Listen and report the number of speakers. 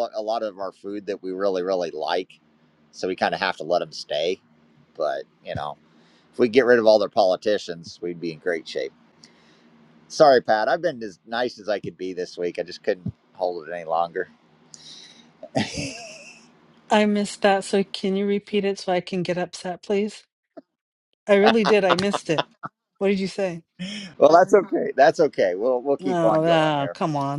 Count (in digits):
2